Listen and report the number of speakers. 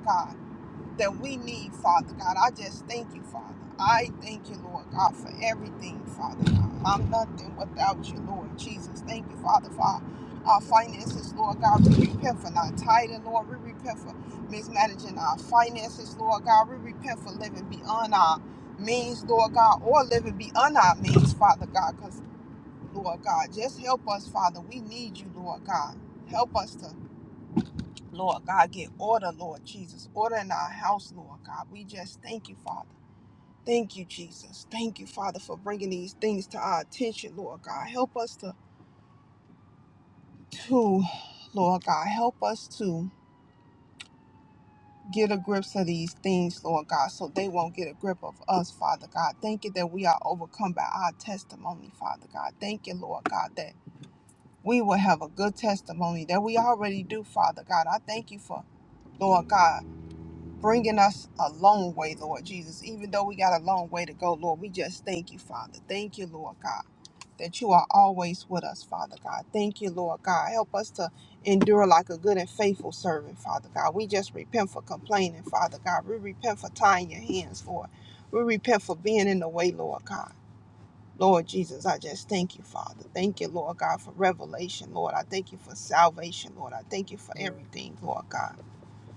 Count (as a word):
one